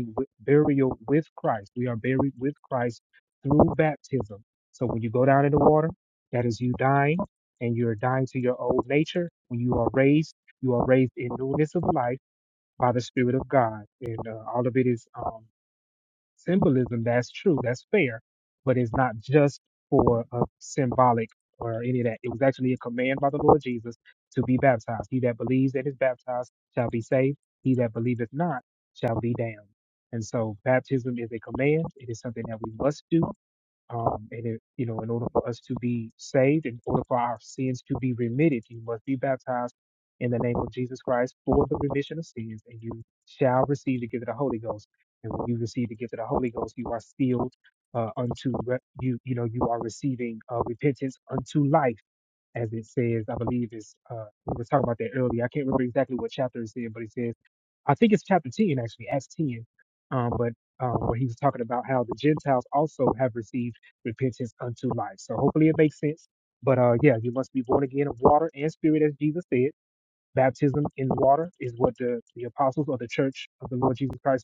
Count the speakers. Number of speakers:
1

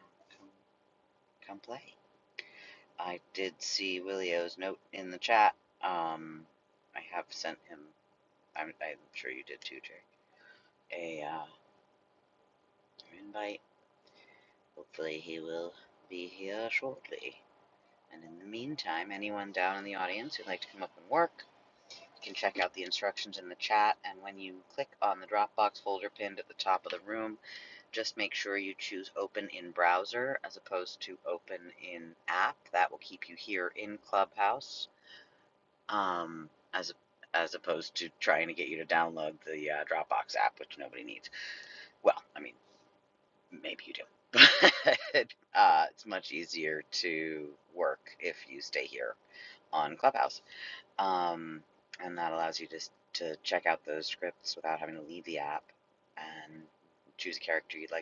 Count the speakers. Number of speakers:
1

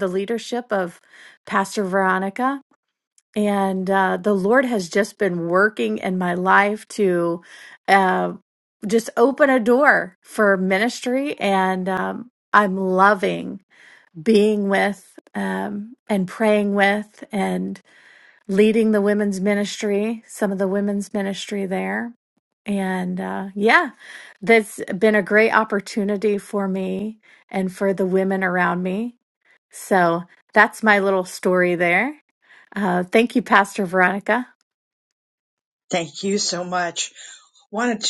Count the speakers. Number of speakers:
2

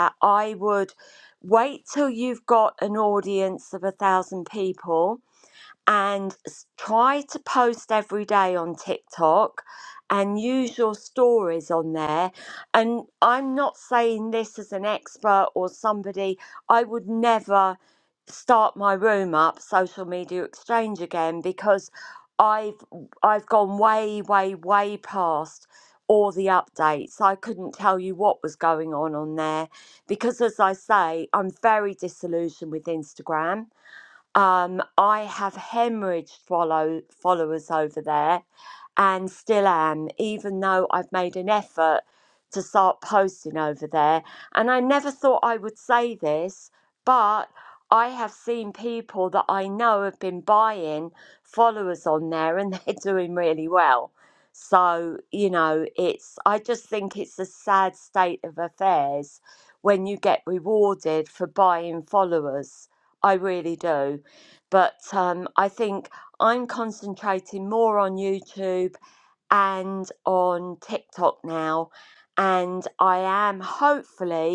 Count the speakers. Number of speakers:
1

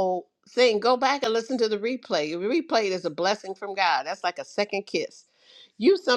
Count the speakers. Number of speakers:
1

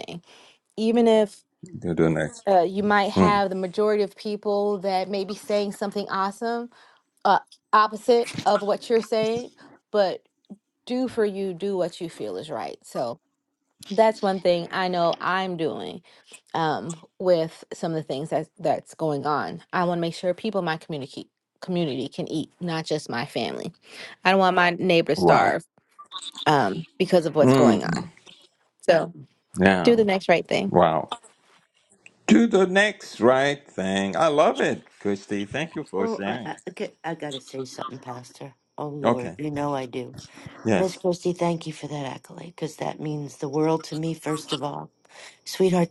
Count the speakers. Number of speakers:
3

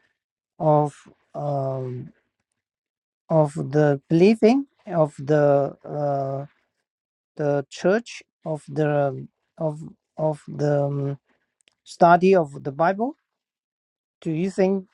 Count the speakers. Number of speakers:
1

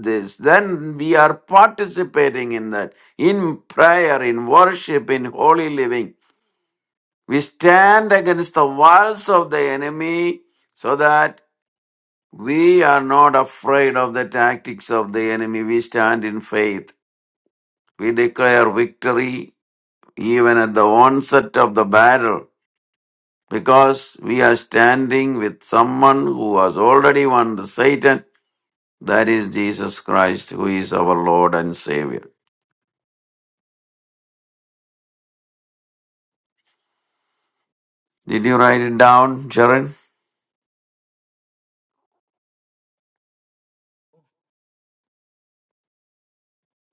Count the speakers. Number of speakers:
1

